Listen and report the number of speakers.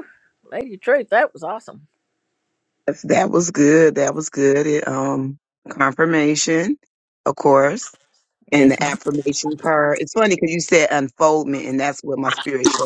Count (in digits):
2